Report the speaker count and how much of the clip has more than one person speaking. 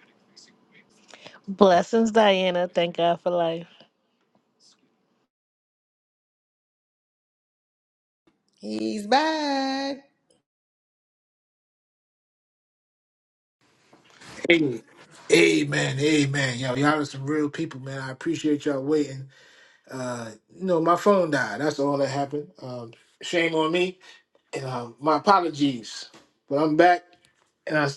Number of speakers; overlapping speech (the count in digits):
3, no overlap